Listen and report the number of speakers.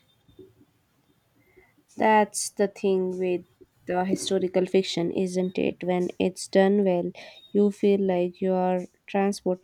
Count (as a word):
one